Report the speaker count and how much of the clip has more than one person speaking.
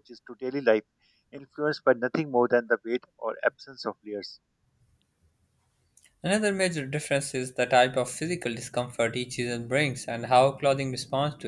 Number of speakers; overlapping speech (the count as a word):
two, no overlap